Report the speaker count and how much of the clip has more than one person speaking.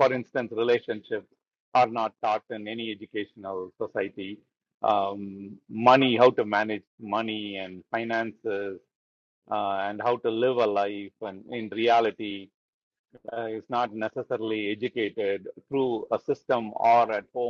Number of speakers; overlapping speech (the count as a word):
one, no overlap